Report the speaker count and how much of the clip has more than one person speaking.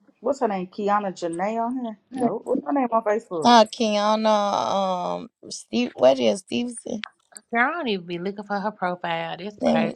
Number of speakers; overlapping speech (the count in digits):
3, about 5%